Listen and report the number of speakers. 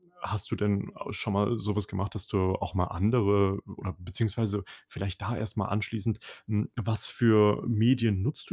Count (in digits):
1